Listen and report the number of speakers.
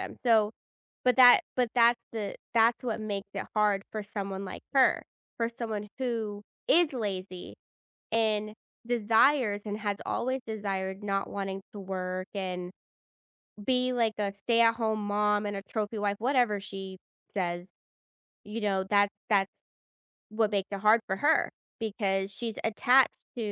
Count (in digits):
1